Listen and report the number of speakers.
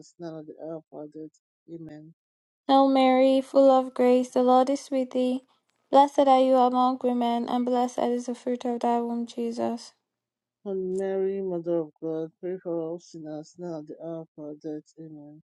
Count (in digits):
2